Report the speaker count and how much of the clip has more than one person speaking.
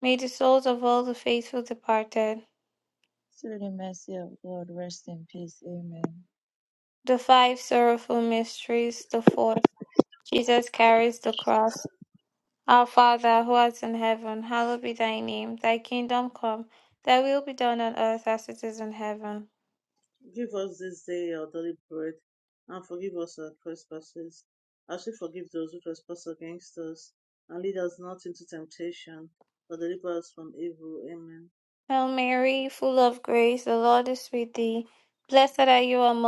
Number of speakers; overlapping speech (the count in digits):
3, no overlap